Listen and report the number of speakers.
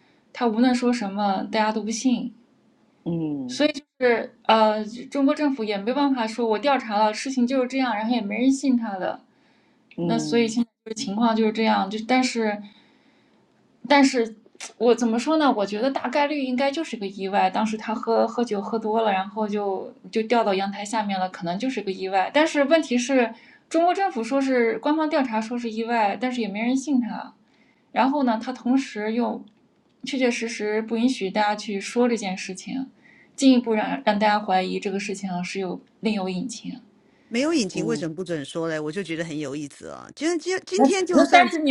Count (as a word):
three